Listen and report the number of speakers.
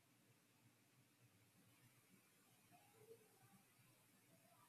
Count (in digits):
0